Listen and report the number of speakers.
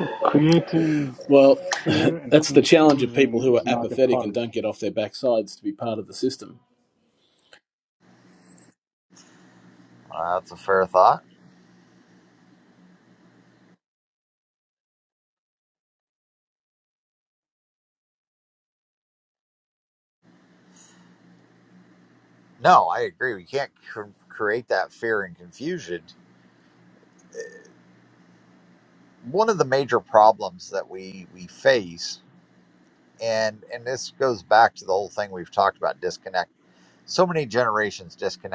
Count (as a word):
three